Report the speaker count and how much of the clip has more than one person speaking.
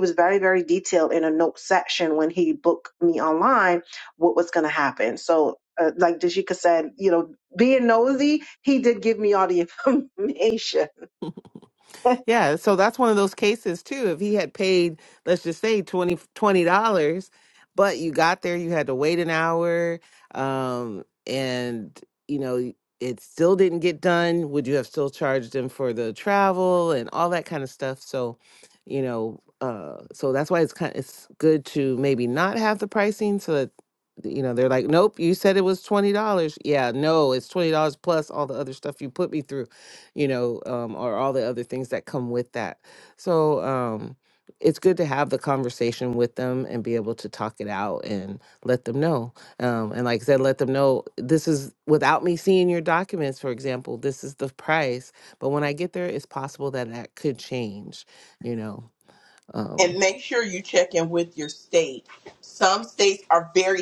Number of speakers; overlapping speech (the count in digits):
3, under 1%